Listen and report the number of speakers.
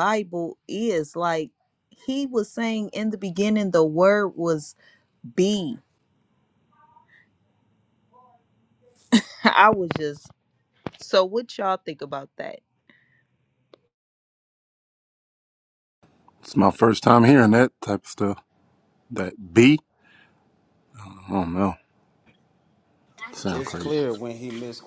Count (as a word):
three